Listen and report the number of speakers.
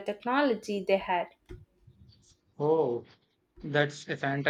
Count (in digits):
2